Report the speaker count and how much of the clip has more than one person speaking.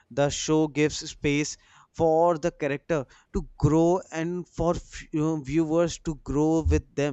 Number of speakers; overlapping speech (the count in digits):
1, no overlap